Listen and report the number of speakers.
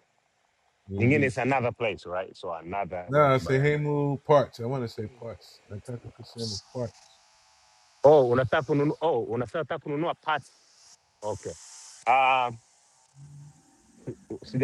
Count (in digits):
2